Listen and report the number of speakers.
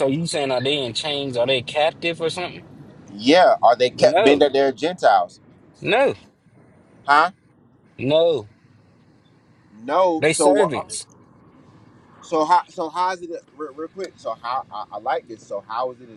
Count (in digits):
2